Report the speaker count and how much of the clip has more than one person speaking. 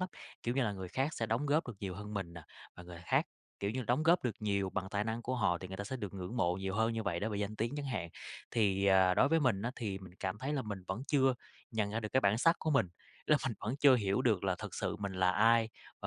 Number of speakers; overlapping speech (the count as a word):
one, no overlap